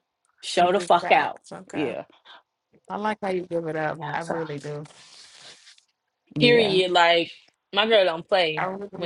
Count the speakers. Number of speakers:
3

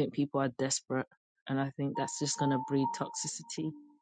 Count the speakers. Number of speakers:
1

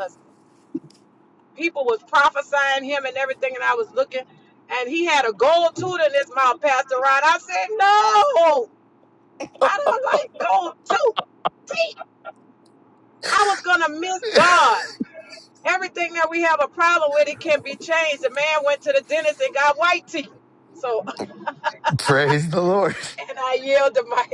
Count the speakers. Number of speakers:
2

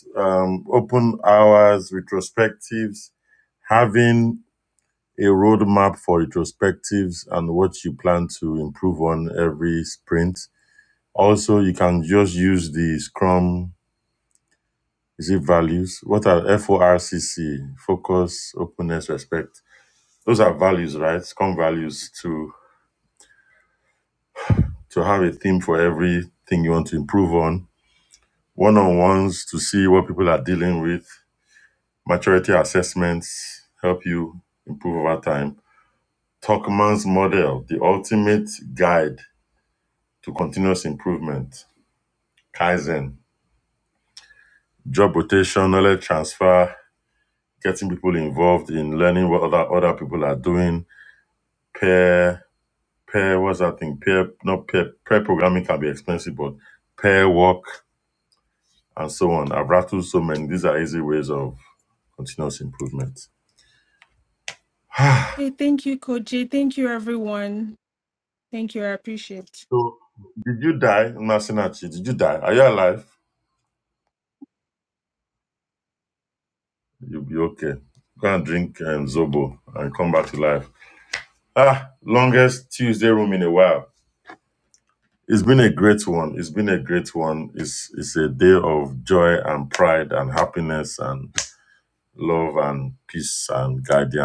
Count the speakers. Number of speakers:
2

